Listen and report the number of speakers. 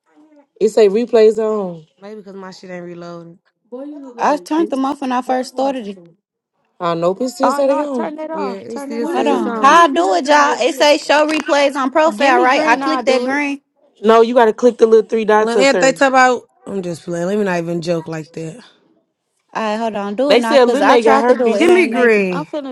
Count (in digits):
4